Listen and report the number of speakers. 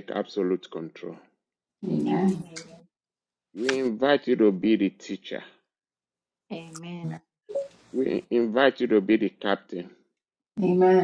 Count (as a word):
three